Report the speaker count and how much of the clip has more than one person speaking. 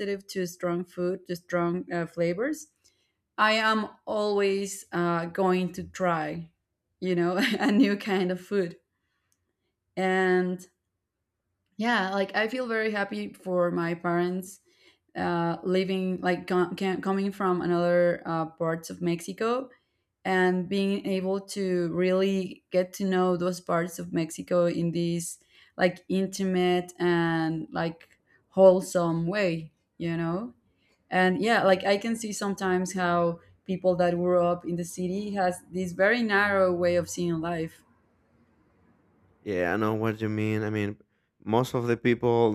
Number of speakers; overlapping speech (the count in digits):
2, no overlap